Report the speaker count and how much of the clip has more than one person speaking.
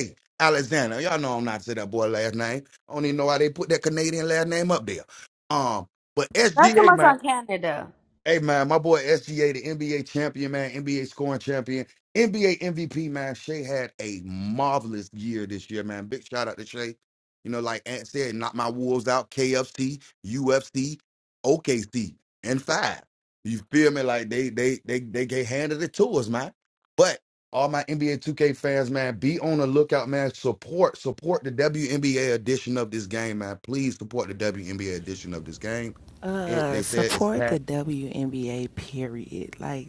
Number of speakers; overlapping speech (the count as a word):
three, about 4%